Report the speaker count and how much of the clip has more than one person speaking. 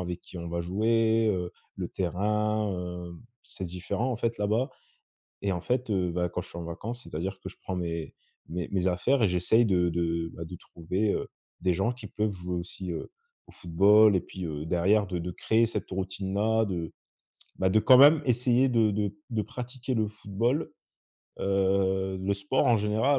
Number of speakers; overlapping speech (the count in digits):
1, no overlap